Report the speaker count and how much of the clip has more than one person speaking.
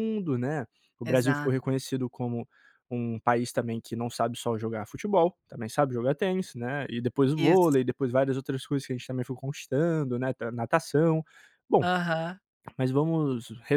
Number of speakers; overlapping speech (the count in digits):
2, about 5%